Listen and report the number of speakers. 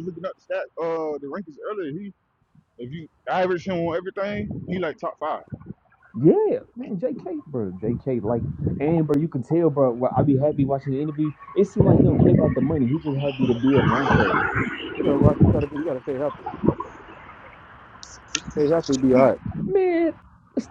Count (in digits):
3